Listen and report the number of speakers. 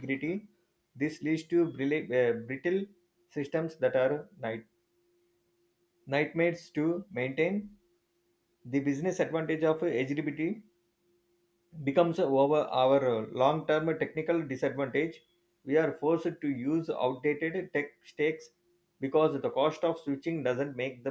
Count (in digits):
1